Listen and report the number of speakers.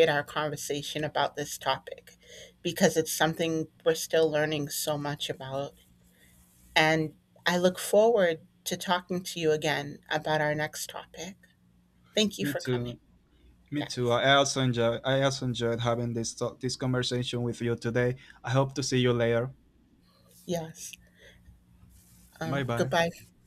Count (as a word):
two